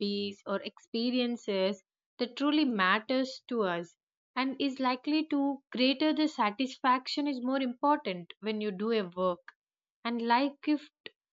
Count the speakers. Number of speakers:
one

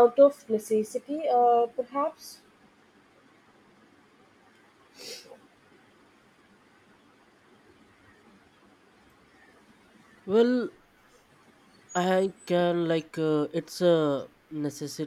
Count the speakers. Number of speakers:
two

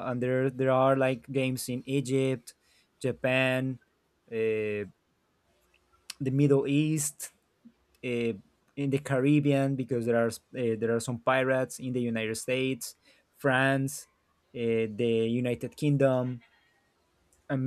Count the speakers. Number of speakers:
one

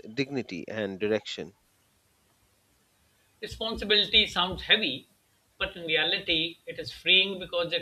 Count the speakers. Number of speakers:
two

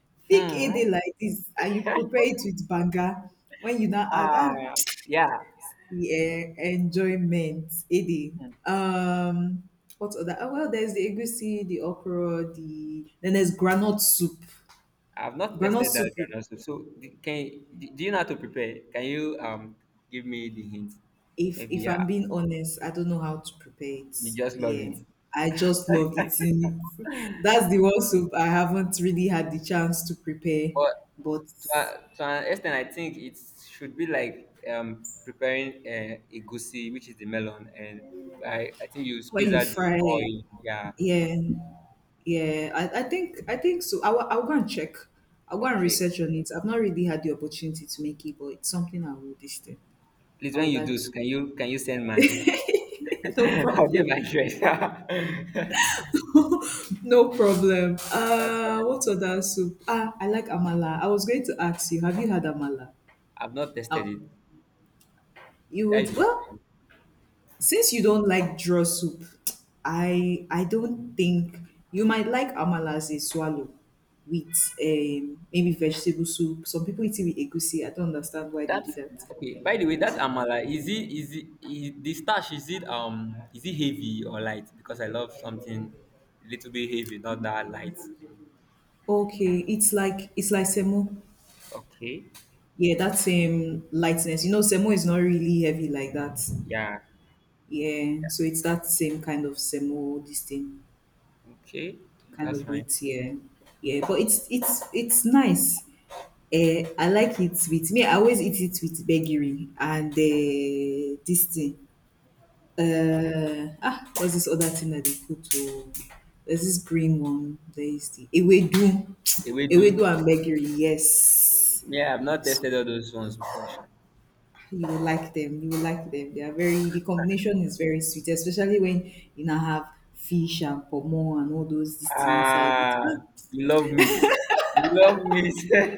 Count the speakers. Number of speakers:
two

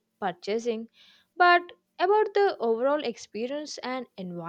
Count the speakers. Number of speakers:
one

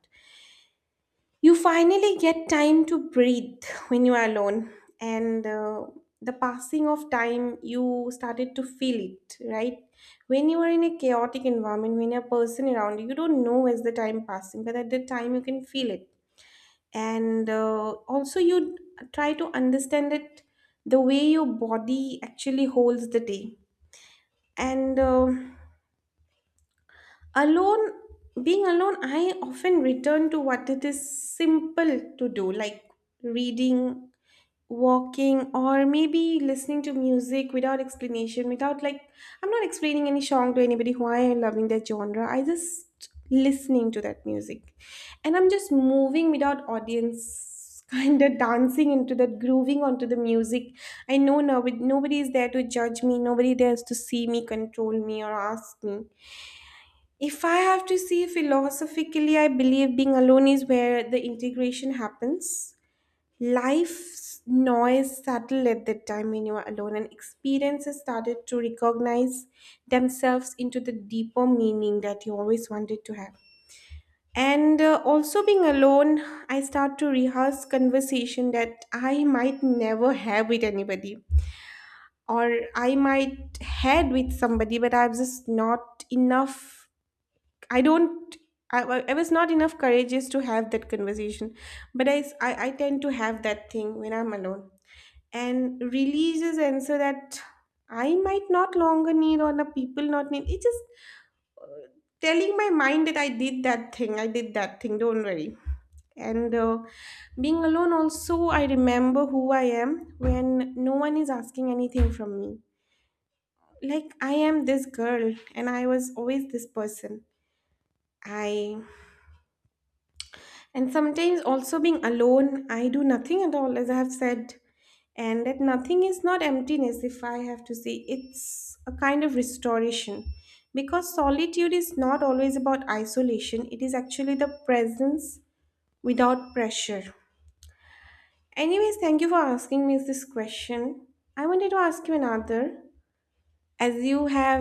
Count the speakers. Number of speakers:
one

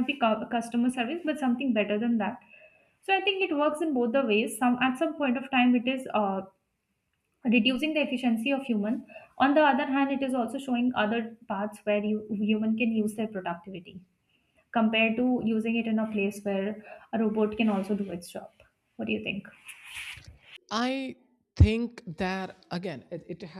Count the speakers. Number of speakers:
two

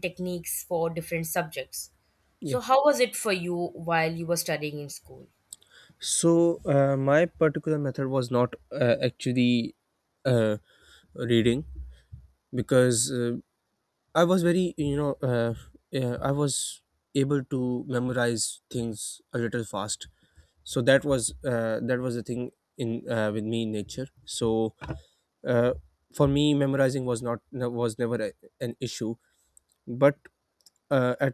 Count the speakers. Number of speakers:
two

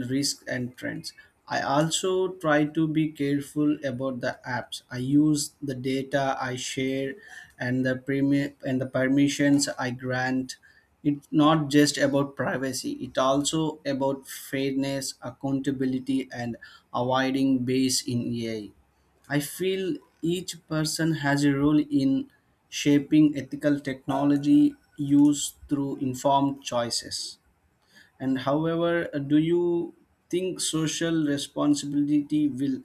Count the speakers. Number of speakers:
one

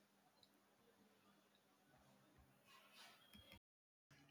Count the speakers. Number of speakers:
zero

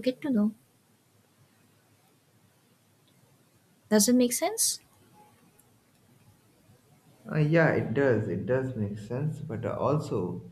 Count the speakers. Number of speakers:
two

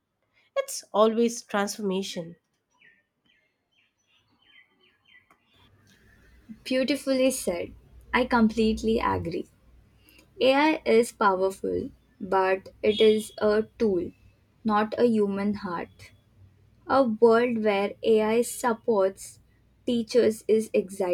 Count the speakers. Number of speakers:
two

